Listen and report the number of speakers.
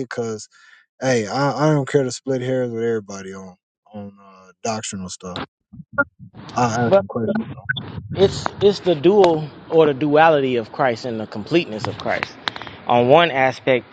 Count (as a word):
two